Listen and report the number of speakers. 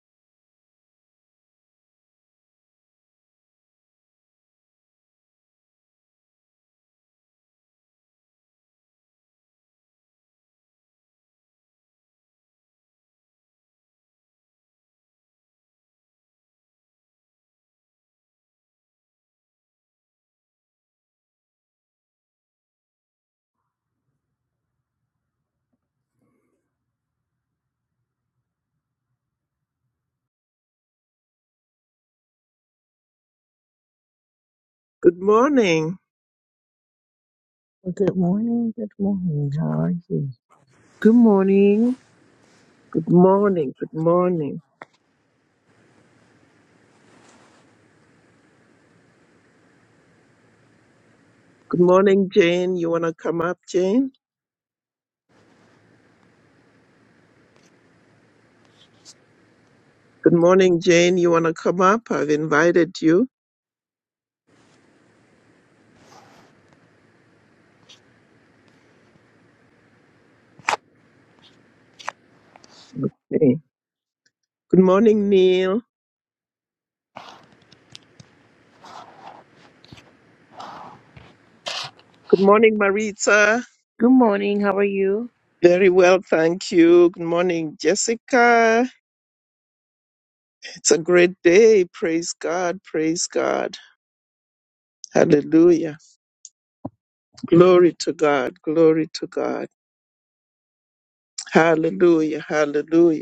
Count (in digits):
3